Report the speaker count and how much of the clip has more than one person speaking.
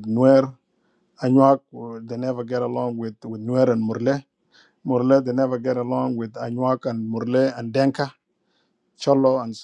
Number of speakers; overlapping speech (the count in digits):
1, no overlap